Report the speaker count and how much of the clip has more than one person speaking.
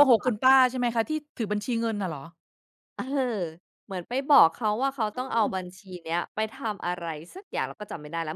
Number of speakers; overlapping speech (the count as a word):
two, about 9%